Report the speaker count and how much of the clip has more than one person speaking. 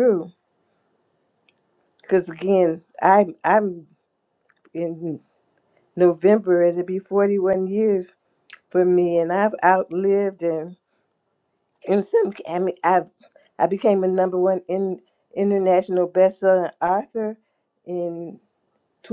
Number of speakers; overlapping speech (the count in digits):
1, no overlap